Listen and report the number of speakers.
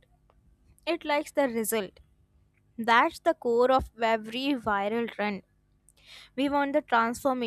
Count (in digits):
1